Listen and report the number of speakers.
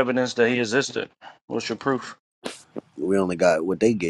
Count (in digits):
2